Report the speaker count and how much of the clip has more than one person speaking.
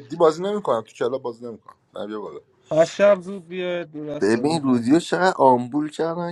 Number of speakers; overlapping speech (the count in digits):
3, about 11%